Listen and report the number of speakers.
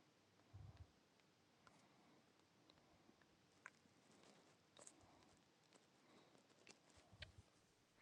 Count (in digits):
0